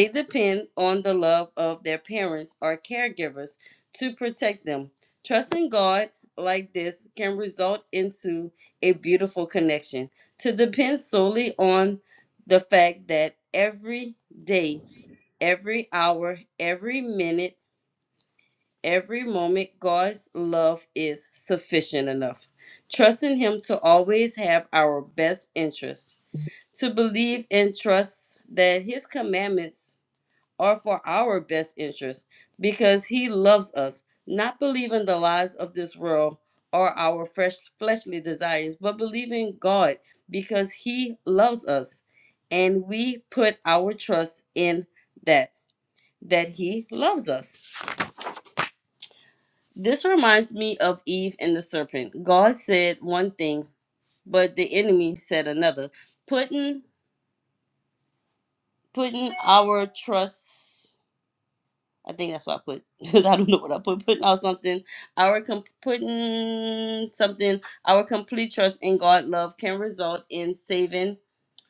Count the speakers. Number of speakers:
1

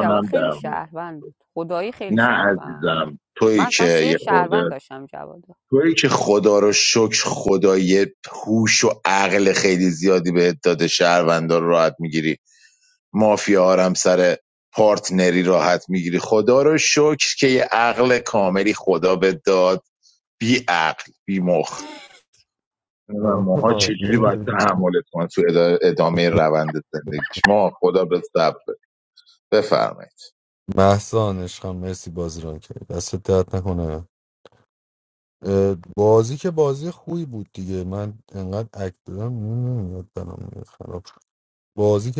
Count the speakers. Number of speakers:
3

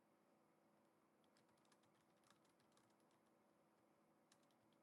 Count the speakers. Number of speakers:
0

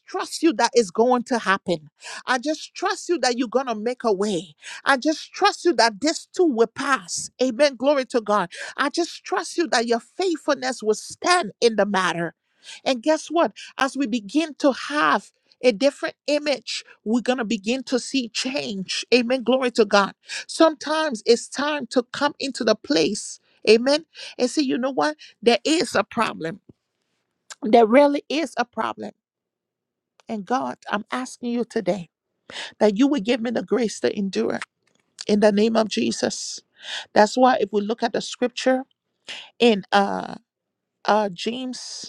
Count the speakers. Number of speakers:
1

